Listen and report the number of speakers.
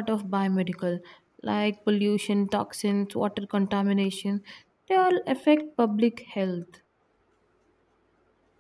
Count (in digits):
1